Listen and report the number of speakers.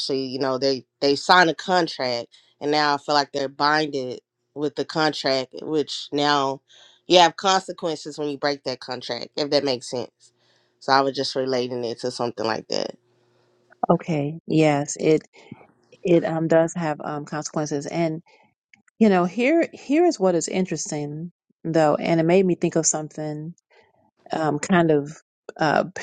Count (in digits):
2